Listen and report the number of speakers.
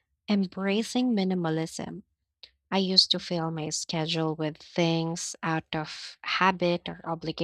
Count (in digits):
1